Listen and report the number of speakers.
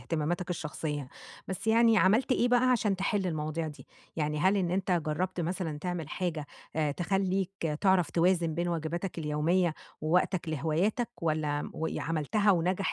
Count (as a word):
one